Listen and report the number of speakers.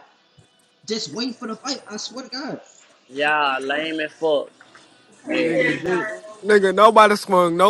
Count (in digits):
3